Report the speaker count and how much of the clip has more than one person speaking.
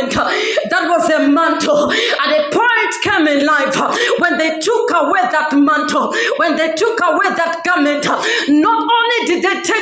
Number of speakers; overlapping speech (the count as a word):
one, no overlap